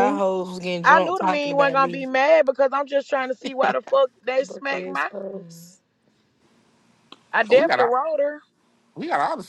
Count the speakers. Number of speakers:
3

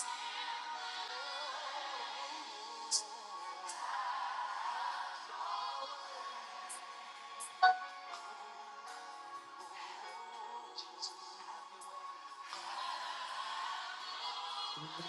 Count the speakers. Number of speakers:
0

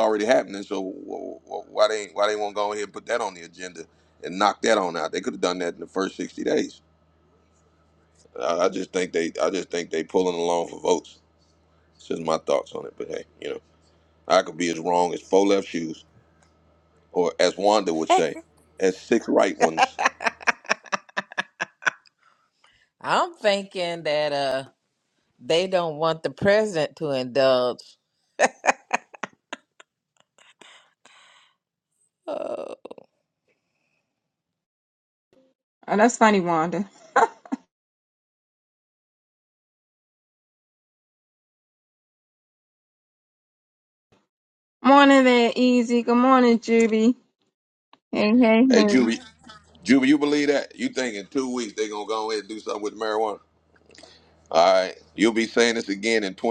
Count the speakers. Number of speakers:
3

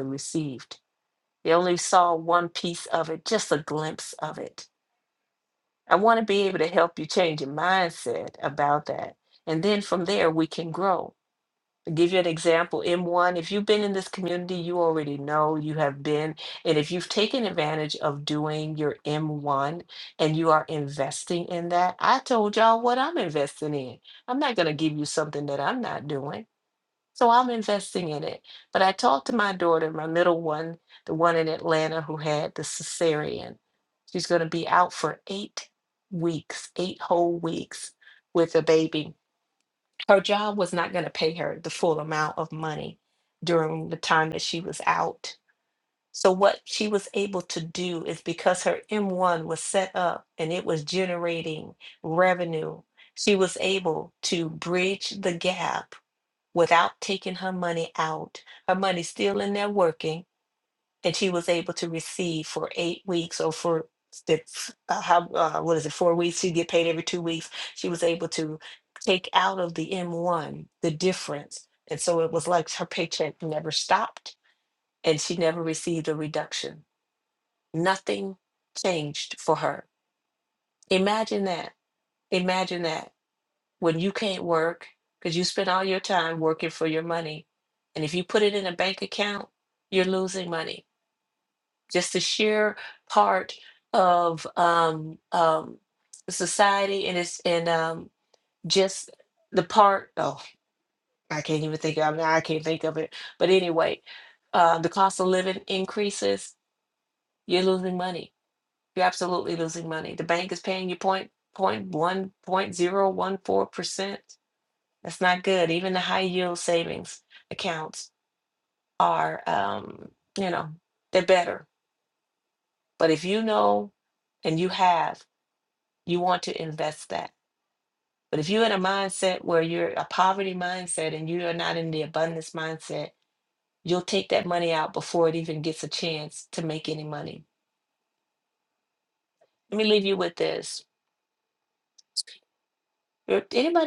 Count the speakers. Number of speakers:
1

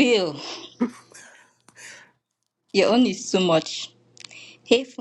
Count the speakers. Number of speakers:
1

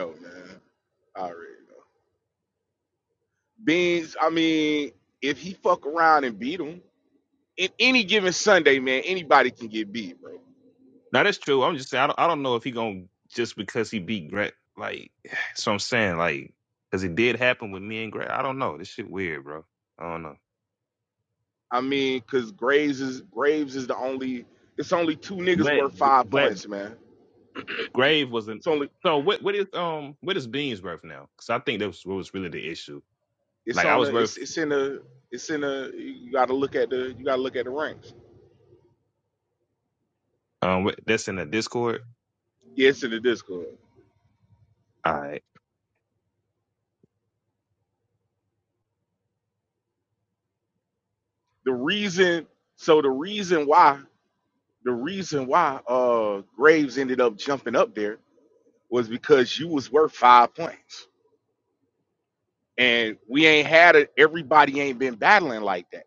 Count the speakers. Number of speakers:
2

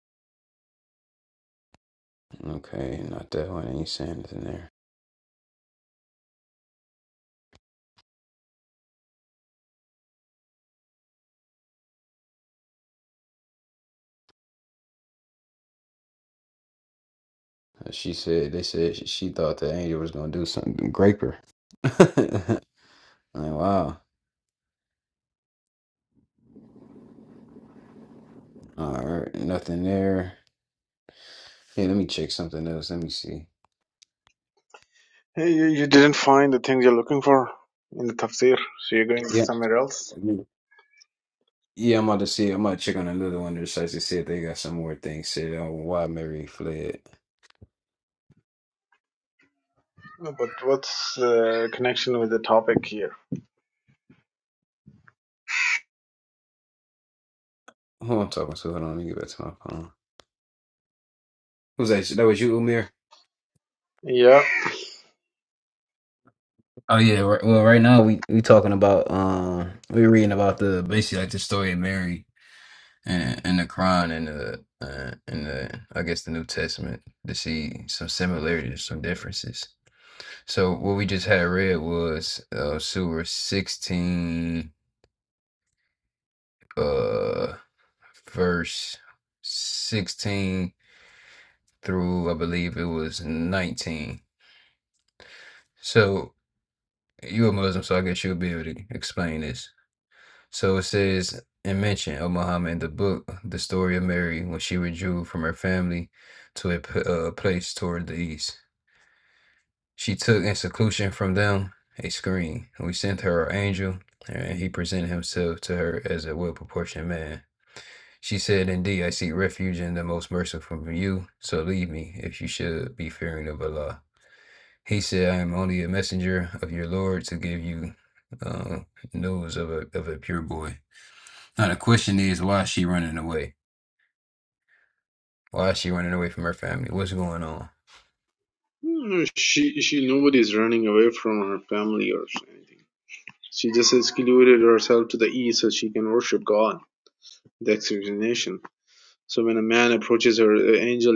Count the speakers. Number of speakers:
2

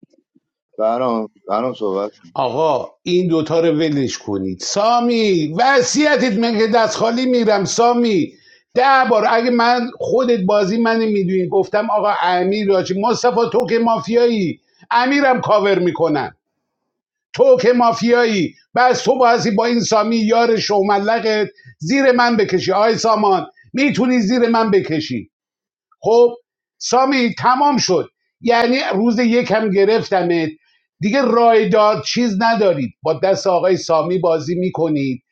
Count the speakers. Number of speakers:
2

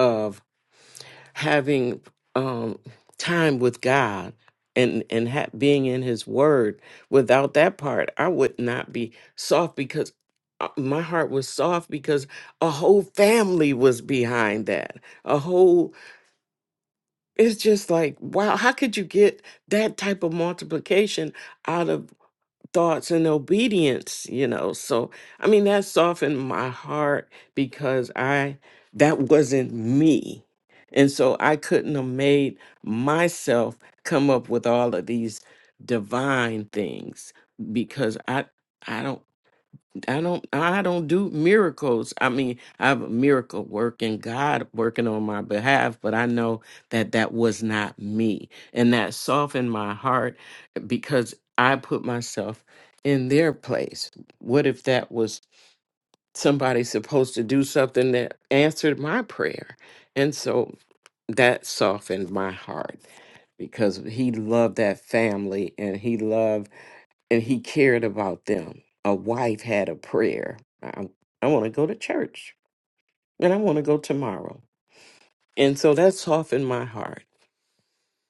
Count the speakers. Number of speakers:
1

